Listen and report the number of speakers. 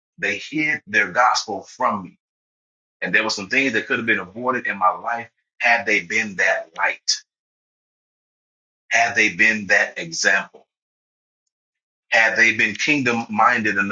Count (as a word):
one